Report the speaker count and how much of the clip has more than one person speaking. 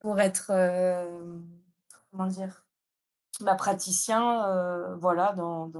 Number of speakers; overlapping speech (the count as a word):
one, no overlap